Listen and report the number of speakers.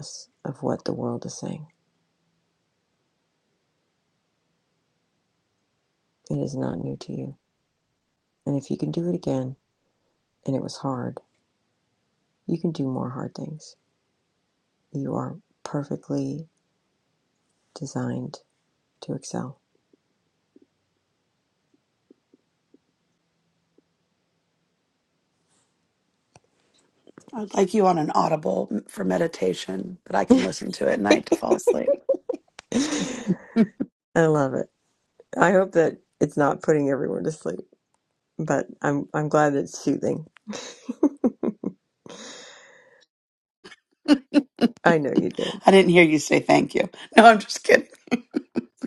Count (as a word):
two